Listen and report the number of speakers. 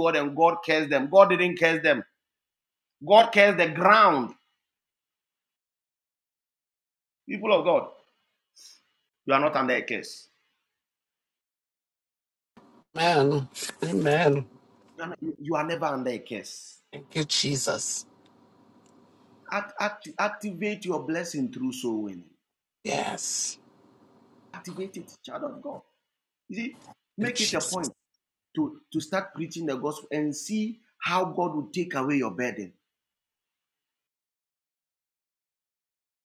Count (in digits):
2